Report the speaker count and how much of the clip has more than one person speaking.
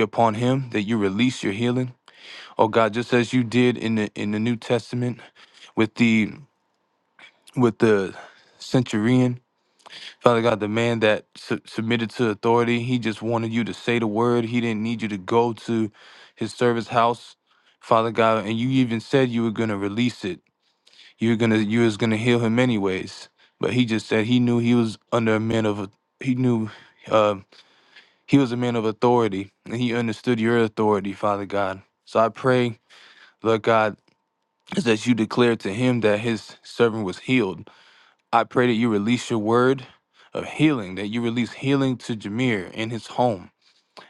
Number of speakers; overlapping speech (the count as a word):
one, no overlap